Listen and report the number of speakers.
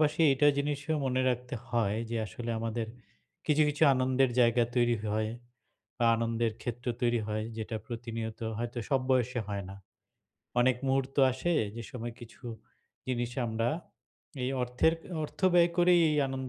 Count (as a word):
one